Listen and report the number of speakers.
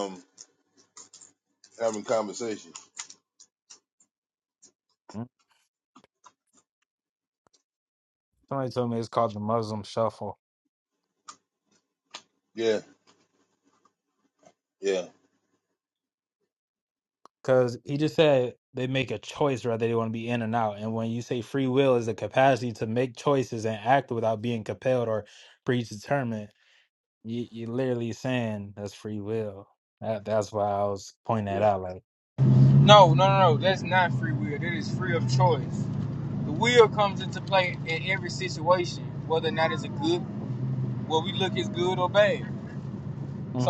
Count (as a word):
three